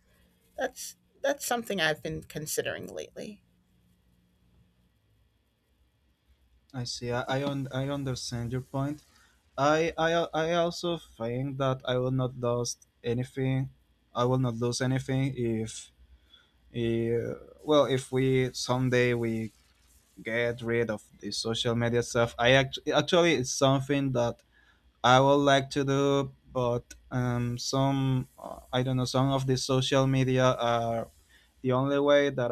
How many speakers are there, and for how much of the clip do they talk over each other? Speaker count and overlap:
2, no overlap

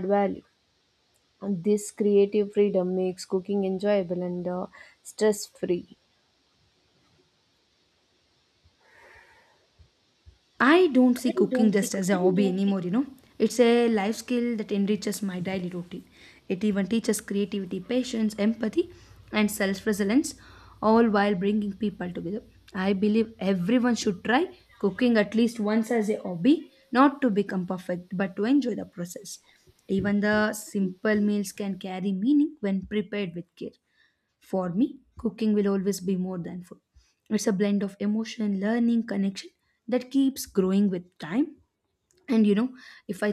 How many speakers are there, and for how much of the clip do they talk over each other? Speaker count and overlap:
2, no overlap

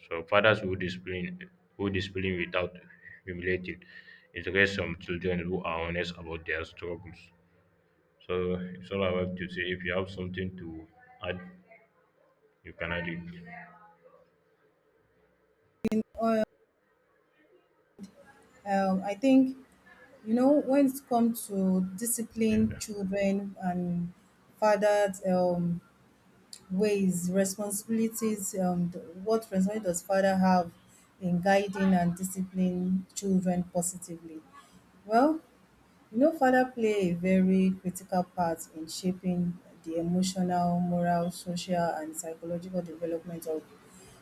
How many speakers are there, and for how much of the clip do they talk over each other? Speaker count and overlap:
2, about 1%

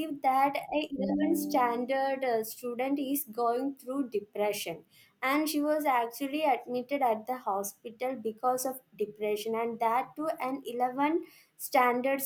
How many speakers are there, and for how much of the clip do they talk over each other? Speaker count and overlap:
1, no overlap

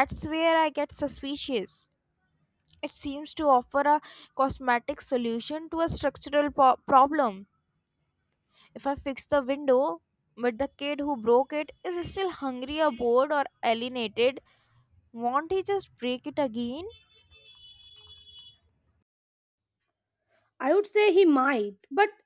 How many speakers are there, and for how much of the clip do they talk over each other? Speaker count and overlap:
2, no overlap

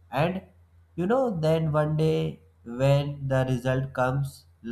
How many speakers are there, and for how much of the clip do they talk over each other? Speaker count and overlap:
1, no overlap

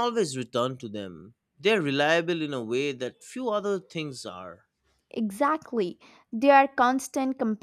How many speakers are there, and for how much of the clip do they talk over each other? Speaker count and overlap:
2, no overlap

